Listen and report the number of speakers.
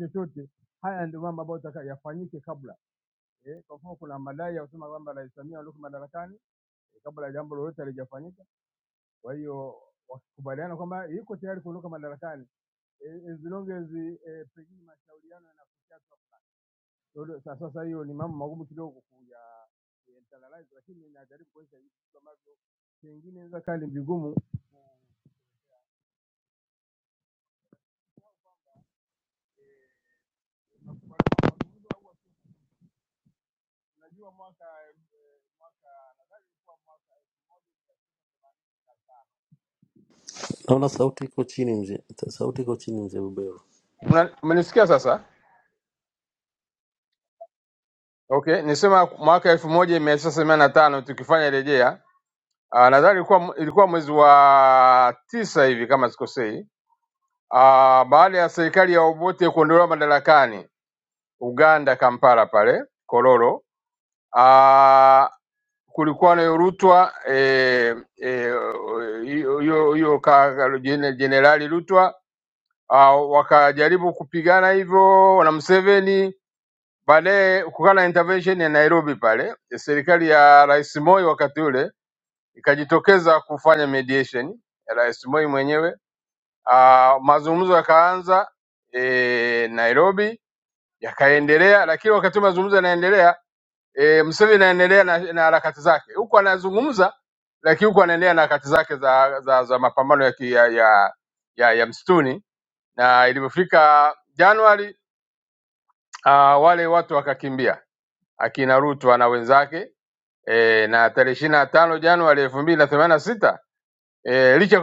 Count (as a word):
two